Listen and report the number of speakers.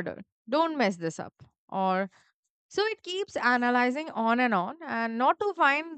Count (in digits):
1